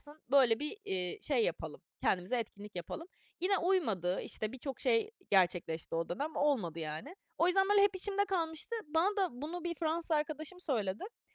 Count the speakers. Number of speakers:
1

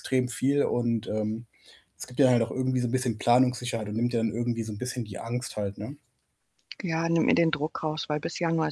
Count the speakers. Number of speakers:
2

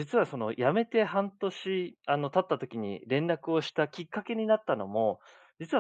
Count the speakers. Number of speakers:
1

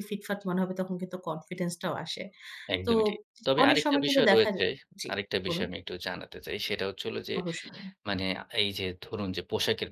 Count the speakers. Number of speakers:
2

